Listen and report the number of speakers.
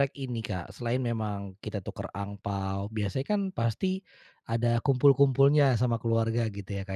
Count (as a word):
one